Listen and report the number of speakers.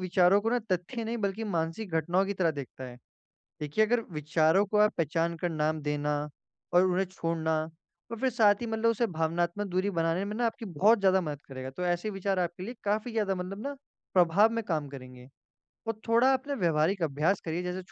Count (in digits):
1